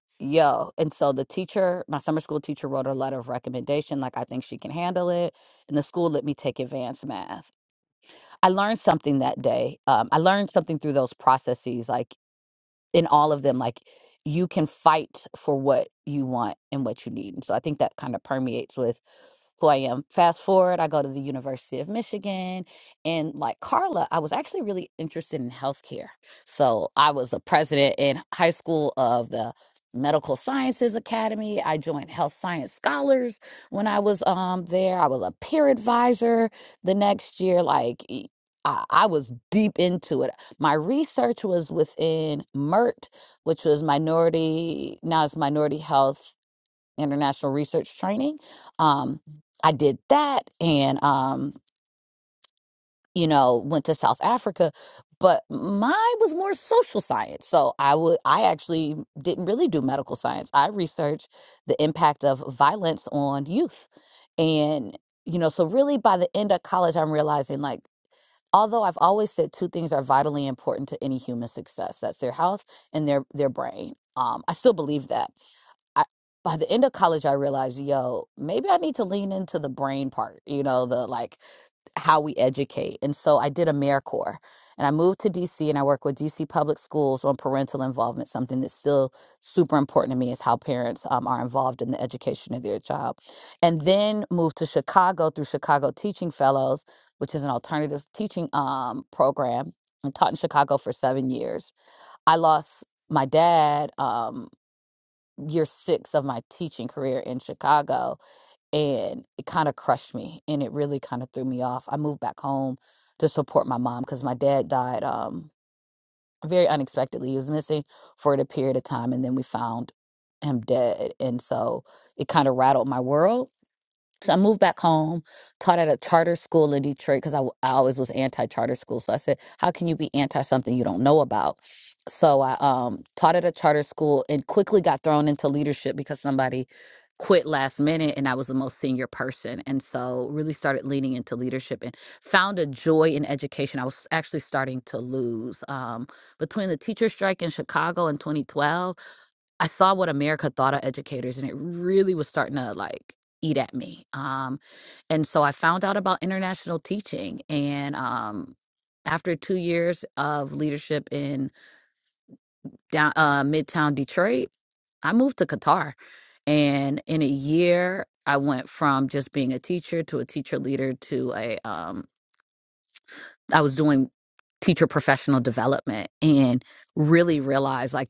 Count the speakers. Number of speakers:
one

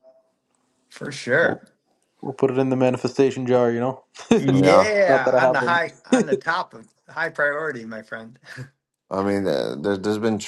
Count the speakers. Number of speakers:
three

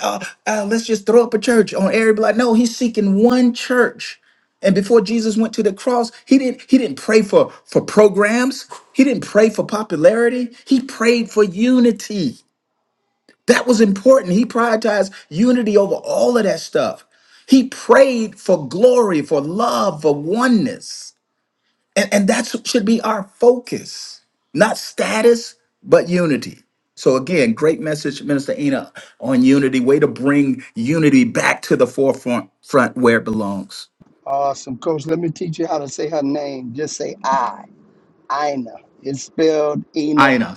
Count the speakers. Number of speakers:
two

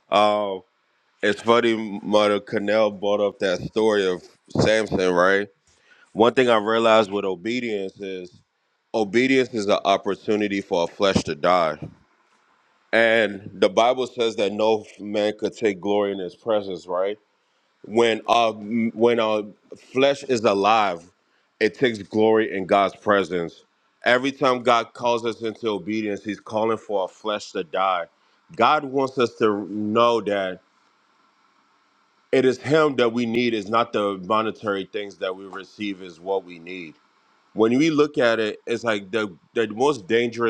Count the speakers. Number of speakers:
one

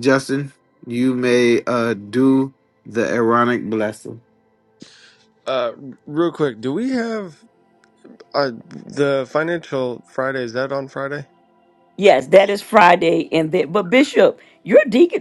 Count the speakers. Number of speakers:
three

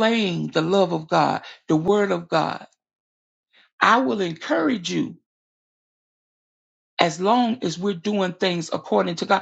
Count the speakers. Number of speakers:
one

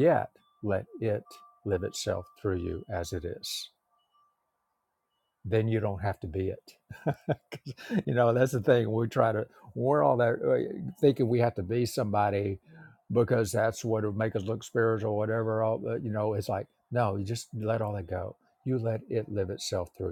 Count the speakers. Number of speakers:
one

